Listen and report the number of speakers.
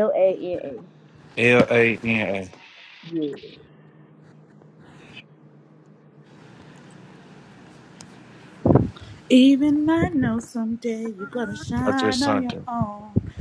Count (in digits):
3